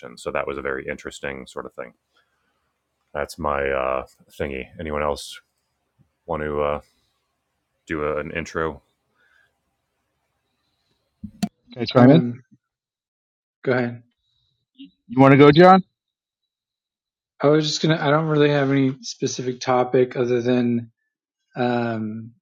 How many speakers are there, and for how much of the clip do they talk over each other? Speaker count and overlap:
3, about 1%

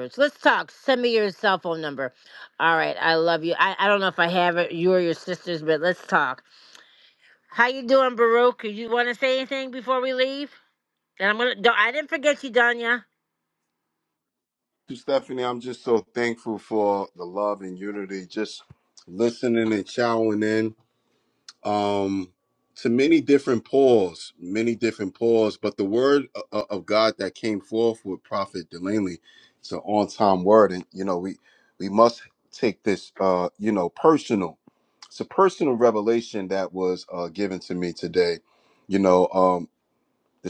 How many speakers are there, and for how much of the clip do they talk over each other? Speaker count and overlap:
2, no overlap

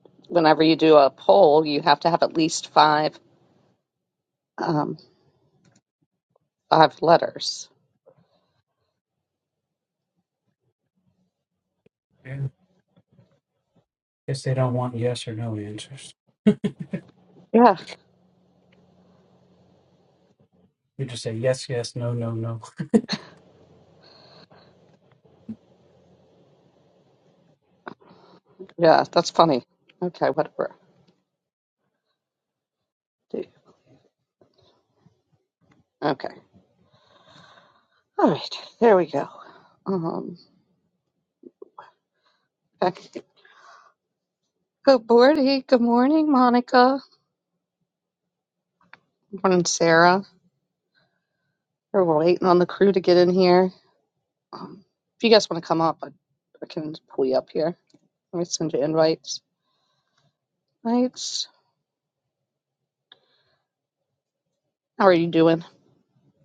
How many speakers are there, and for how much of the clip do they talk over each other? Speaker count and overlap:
2, no overlap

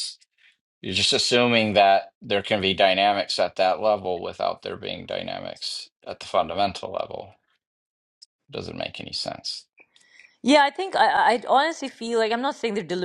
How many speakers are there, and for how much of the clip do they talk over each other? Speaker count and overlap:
2, no overlap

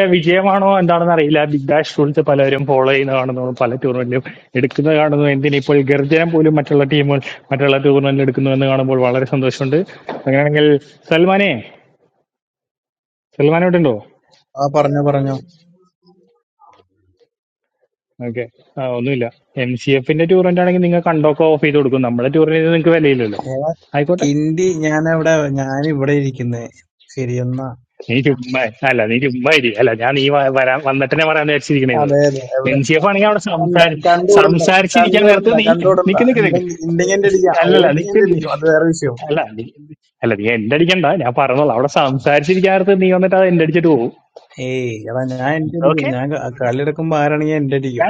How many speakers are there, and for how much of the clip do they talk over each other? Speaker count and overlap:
2, about 8%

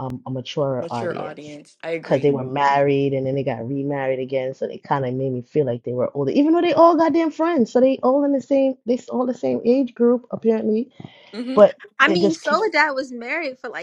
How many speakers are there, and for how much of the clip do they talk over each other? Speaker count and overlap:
3, about 12%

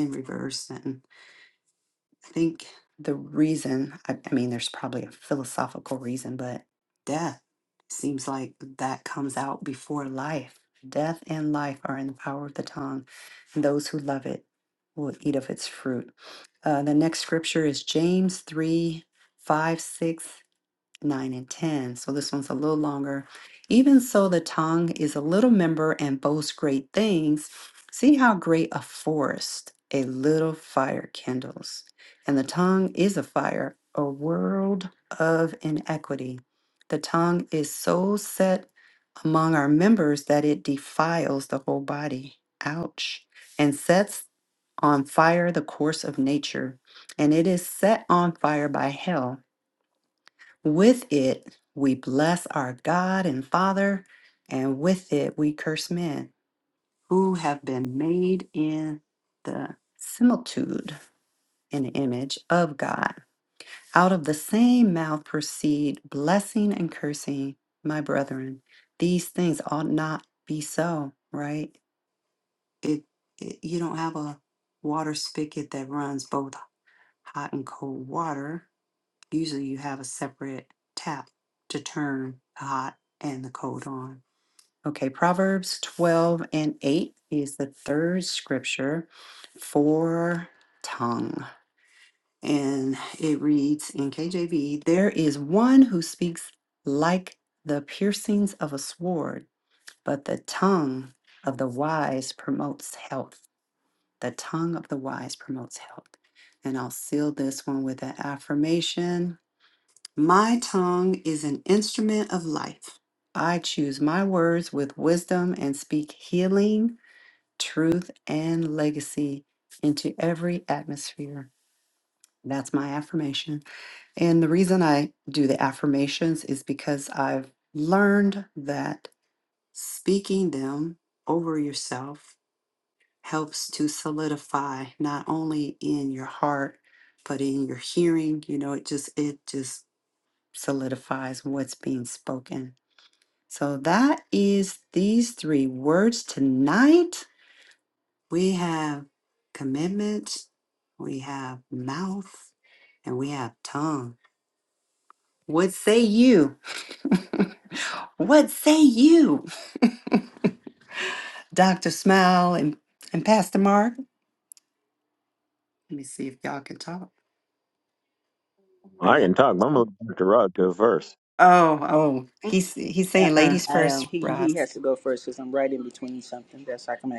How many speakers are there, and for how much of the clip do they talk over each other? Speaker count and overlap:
3, about 1%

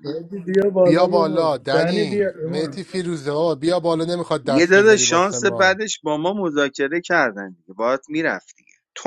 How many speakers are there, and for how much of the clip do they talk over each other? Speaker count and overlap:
3, about 35%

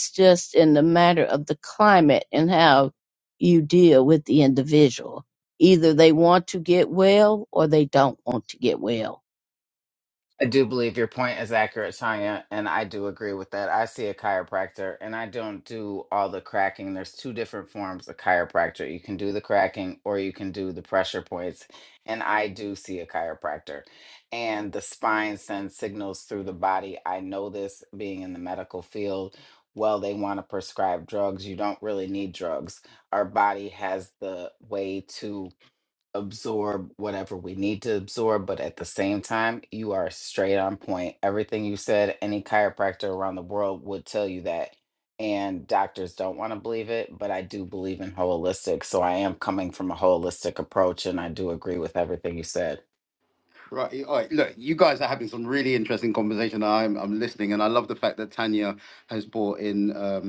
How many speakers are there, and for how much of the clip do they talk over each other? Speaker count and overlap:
3, no overlap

